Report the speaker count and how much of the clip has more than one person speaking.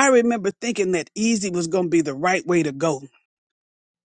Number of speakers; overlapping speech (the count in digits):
1, no overlap